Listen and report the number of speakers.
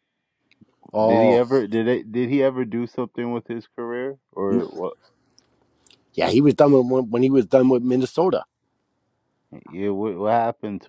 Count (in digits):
2